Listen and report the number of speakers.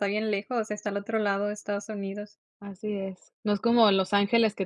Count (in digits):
2